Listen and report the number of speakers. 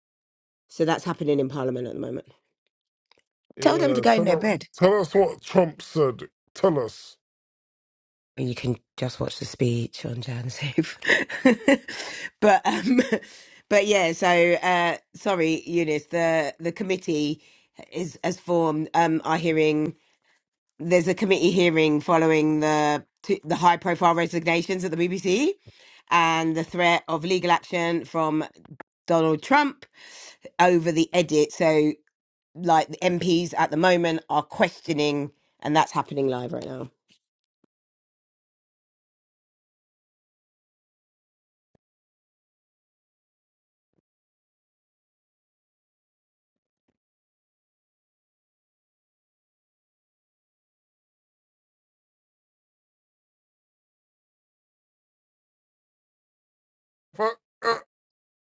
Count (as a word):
two